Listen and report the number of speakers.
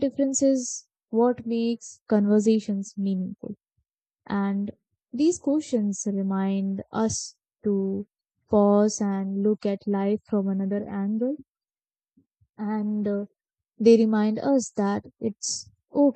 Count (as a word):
one